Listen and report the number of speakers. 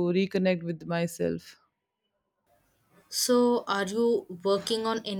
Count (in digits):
2